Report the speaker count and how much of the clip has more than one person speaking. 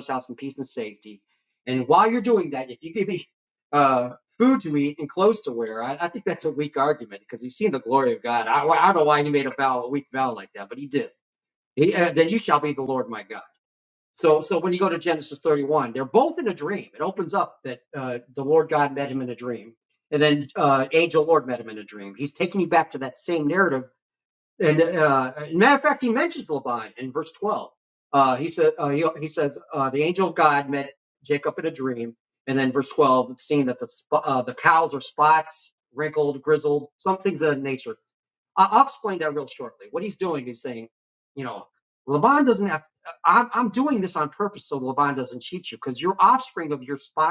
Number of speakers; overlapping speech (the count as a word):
one, no overlap